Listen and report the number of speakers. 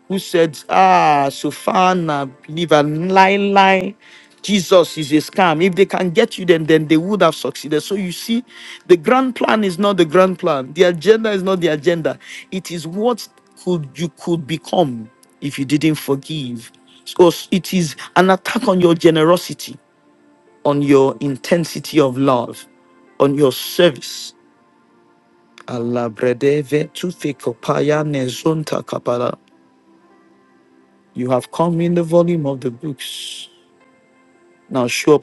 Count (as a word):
one